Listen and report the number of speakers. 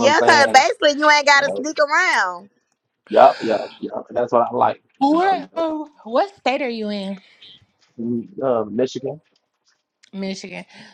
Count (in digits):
3